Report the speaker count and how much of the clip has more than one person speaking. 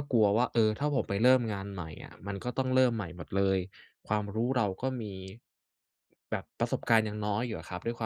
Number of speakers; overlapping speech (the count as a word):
one, no overlap